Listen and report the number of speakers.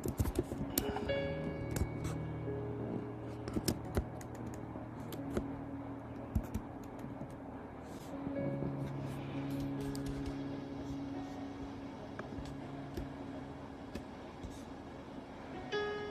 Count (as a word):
zero